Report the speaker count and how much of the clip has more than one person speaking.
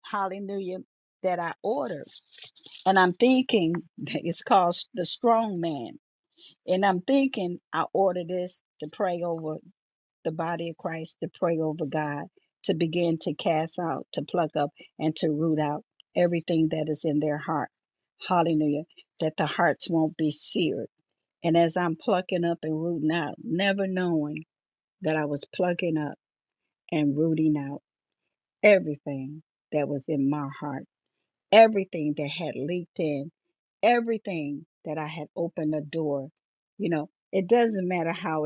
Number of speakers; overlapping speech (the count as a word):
one, no overlap